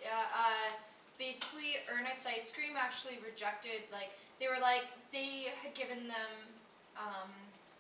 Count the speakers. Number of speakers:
one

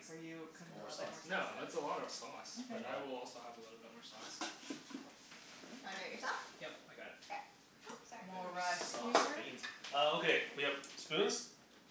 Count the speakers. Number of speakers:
four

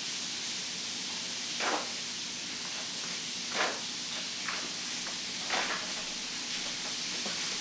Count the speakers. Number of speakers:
zero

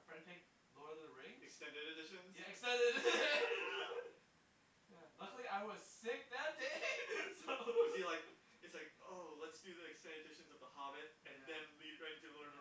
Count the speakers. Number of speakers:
two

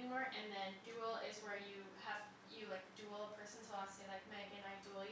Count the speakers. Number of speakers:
one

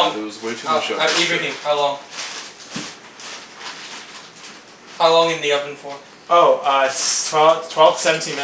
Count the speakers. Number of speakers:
three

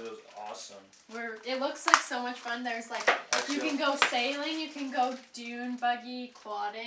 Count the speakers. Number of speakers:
two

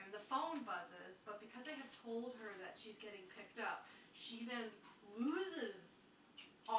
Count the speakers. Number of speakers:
one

